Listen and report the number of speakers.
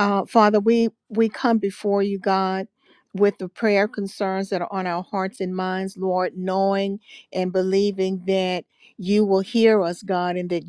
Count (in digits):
1